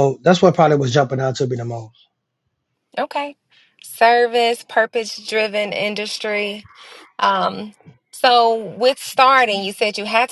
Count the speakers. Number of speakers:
2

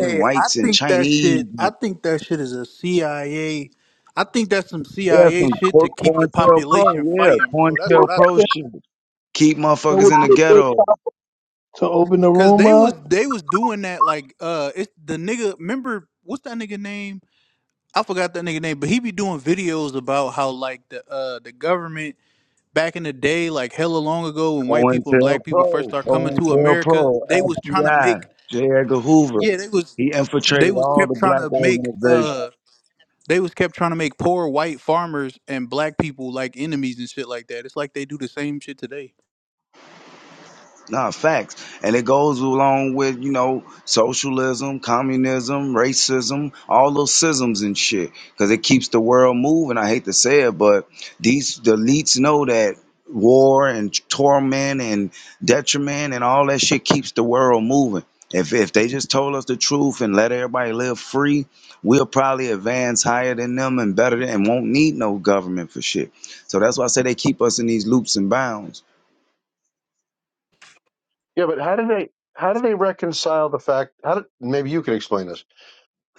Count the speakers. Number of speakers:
4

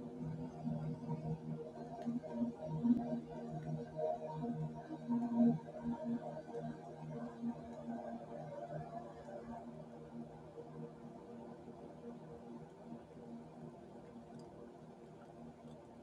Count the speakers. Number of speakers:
0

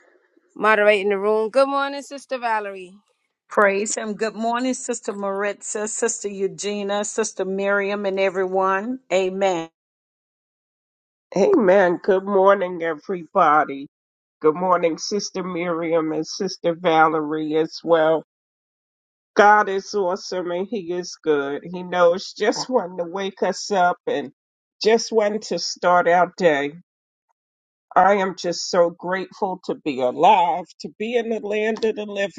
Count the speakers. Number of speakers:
3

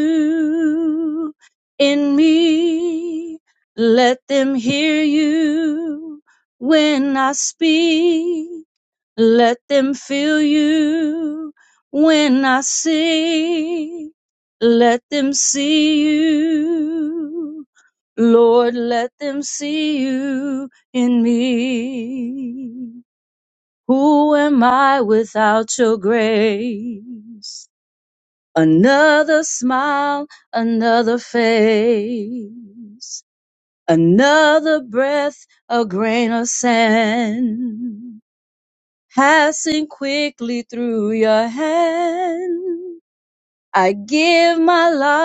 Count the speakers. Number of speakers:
1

